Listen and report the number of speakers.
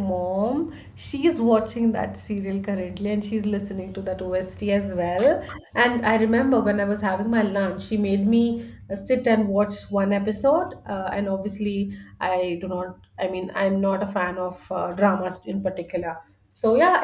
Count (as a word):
one